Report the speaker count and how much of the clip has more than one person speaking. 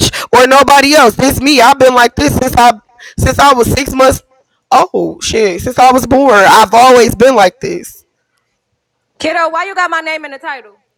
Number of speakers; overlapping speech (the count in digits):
2, no overlap